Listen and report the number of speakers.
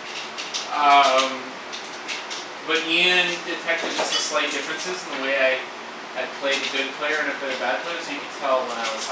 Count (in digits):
1